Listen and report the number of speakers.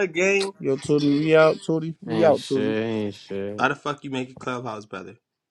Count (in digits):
3